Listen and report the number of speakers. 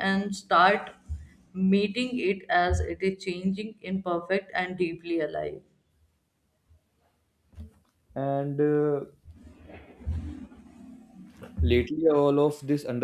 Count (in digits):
2